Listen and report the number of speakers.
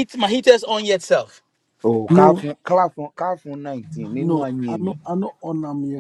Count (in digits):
3